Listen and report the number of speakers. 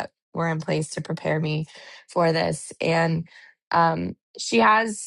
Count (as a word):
one